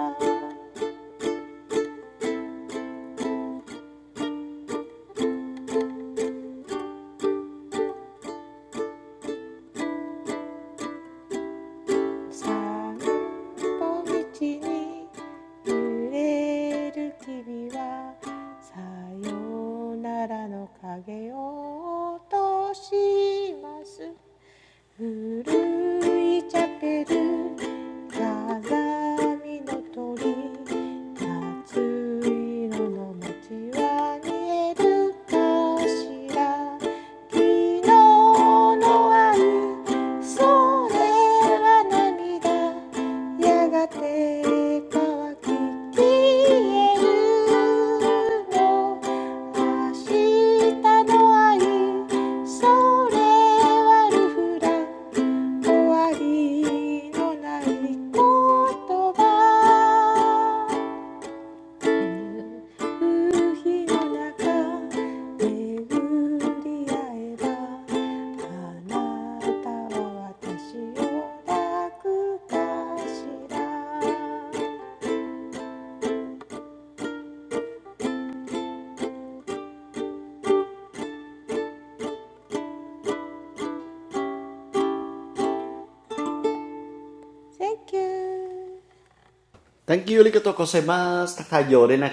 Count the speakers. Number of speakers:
2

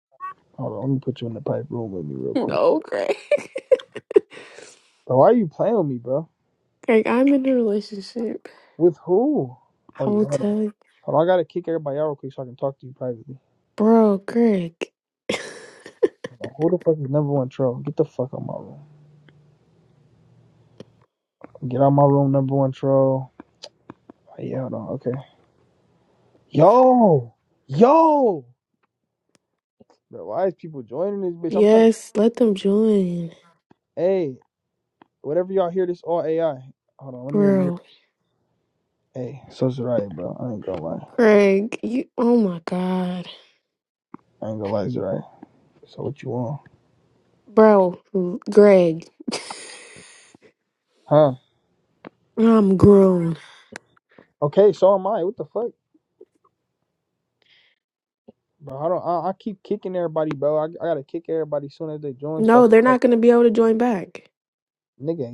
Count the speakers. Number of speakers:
2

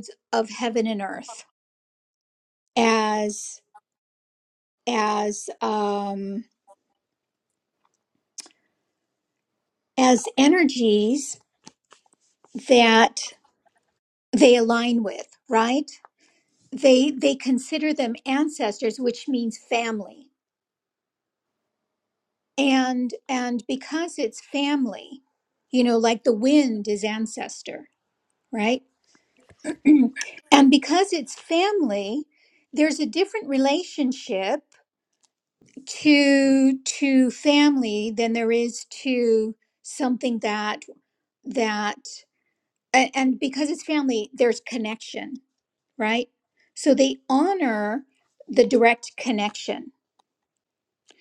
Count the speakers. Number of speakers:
1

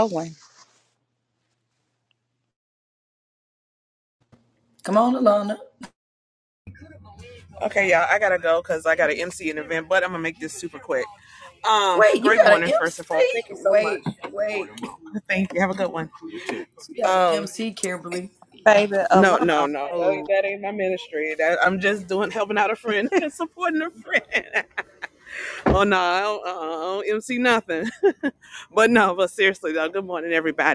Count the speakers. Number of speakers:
3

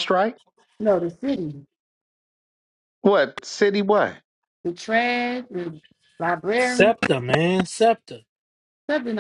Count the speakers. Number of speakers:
3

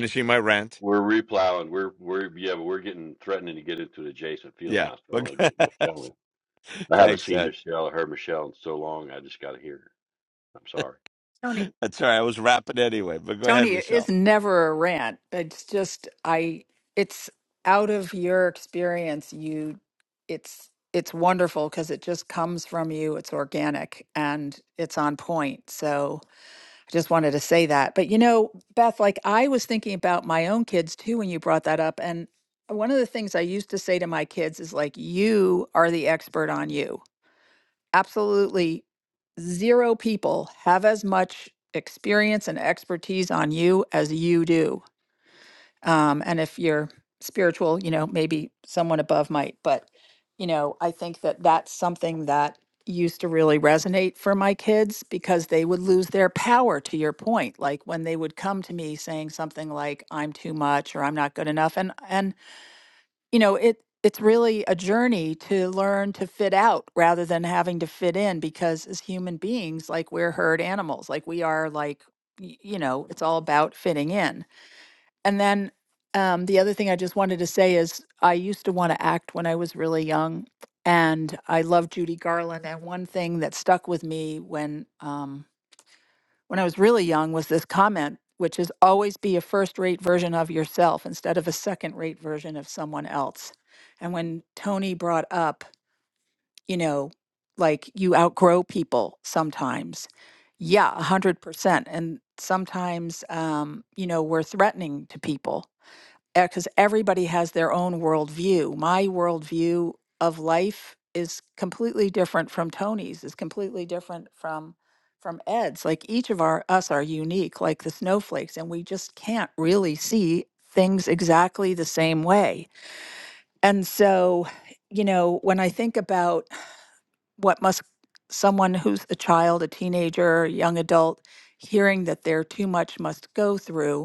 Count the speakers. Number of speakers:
3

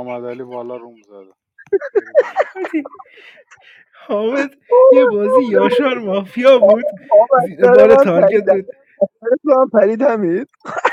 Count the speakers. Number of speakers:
3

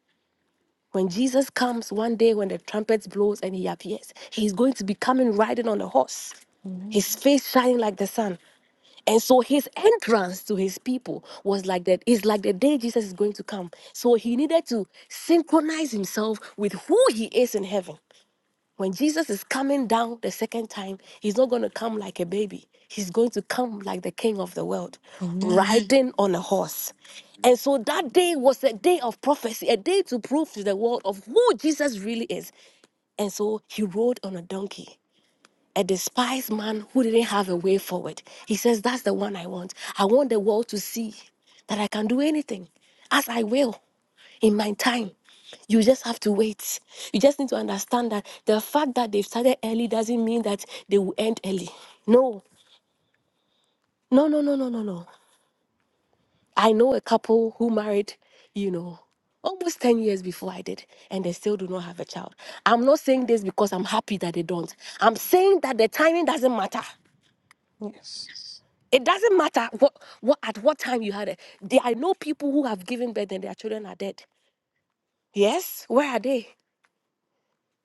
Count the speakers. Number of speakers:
2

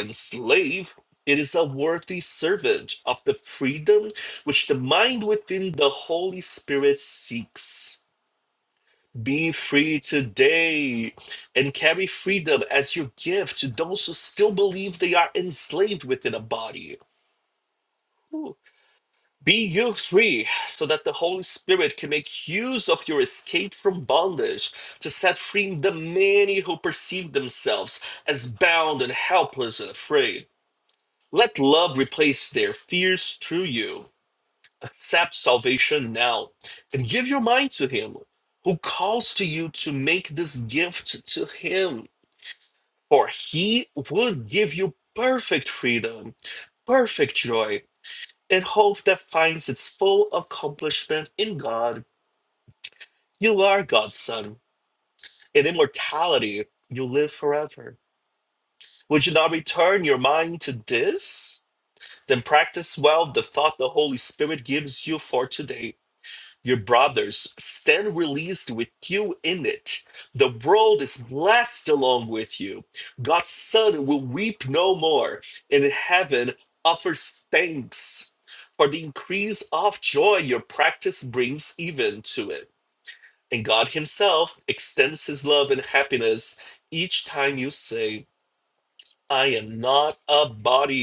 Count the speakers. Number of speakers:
1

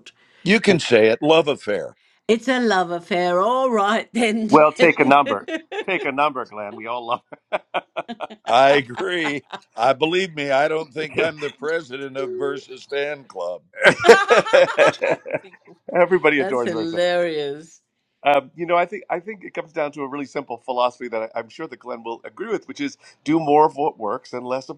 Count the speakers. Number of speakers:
3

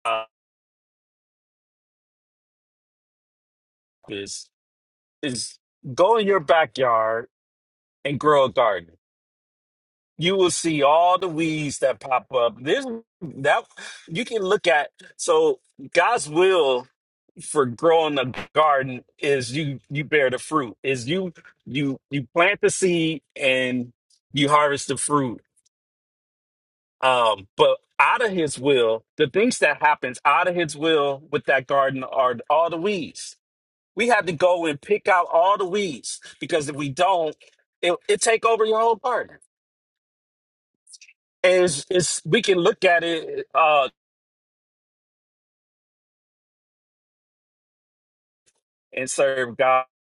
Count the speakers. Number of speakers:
1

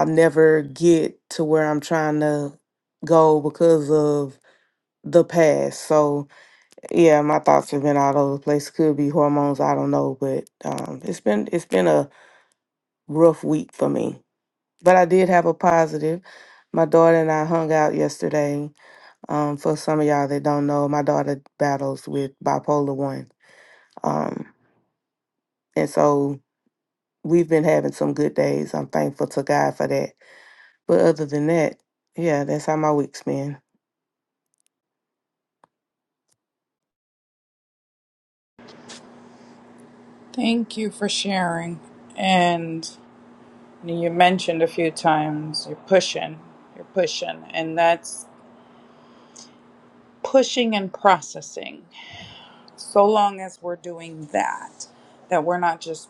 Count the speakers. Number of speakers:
2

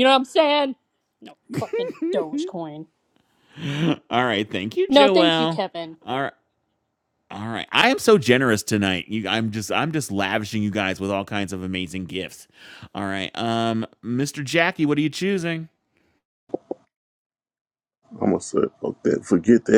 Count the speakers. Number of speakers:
3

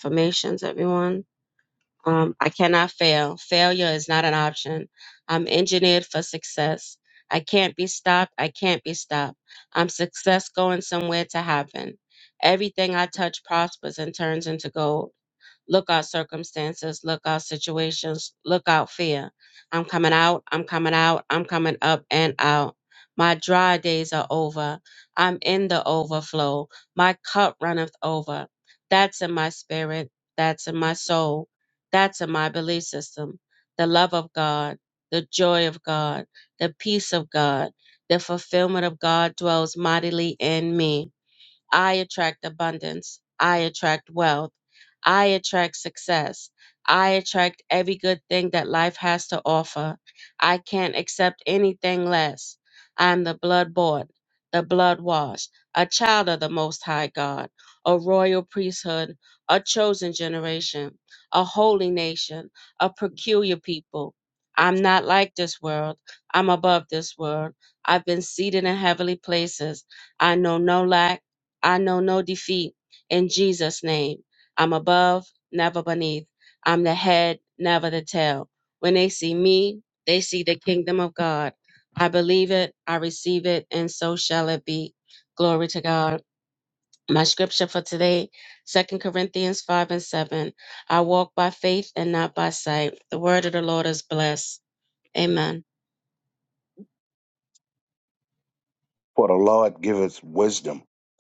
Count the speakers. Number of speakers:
2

